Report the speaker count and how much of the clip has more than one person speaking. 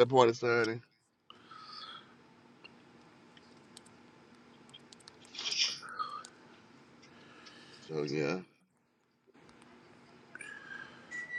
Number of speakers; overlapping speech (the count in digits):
1, no overlap